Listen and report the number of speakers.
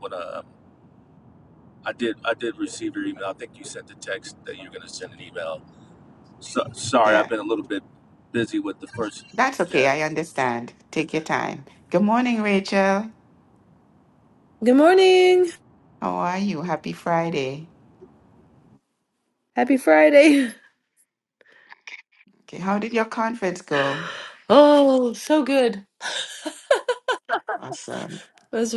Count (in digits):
3